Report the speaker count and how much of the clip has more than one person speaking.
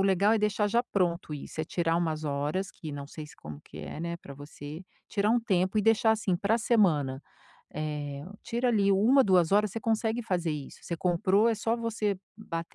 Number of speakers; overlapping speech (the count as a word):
one, no overlap